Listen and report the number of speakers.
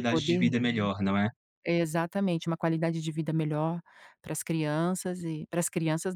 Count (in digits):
2